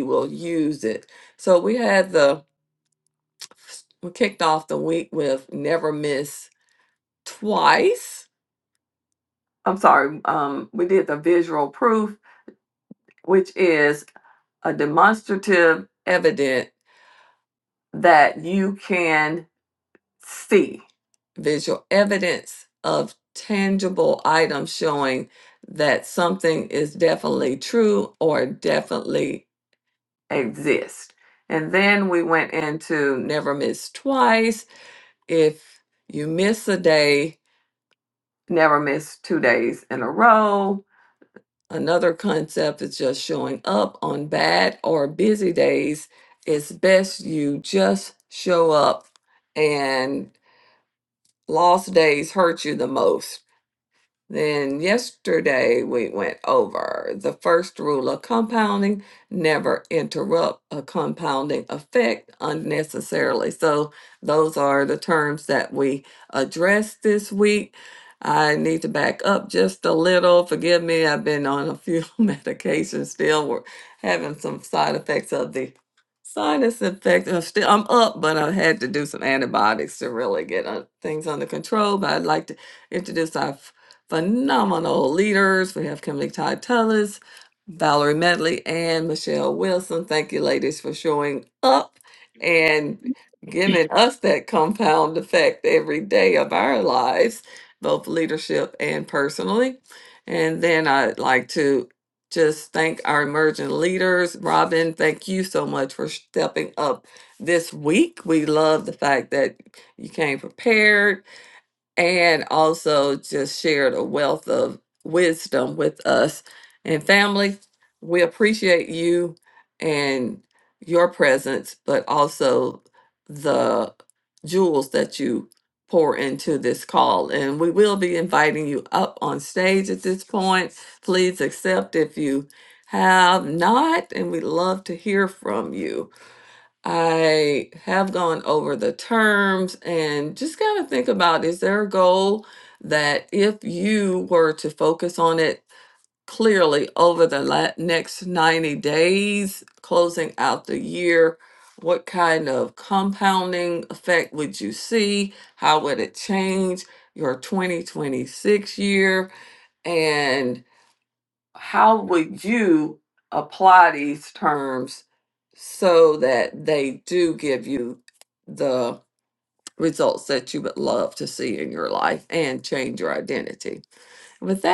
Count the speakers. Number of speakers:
1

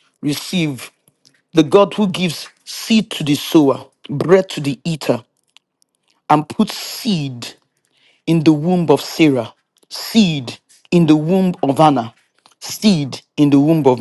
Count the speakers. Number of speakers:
1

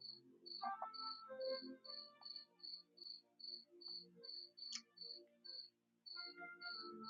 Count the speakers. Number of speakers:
0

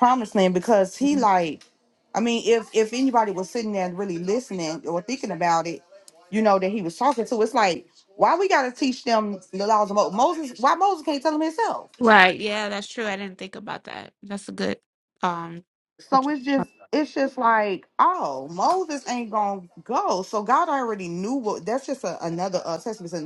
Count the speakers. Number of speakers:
2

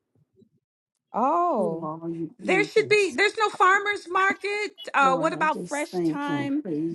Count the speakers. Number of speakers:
2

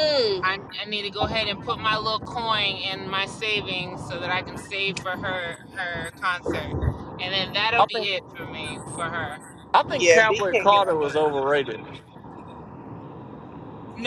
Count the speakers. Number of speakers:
3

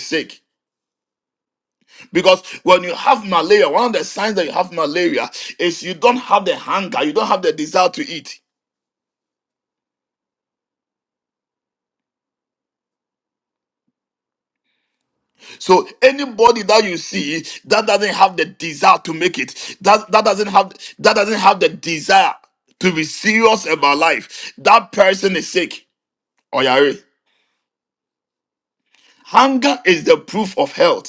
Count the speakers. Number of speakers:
1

